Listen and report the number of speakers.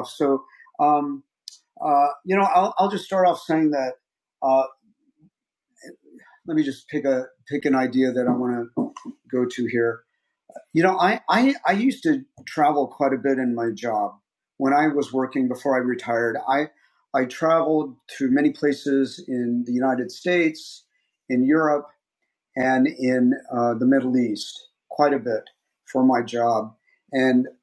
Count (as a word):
one